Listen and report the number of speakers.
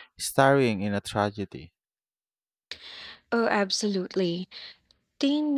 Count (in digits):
2